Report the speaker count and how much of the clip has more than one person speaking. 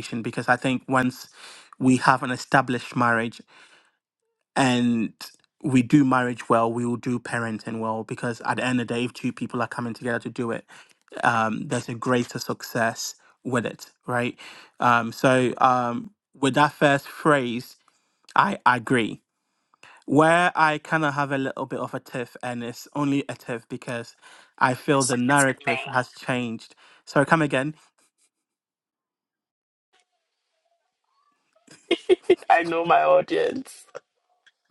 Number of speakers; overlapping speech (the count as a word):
two, about 3%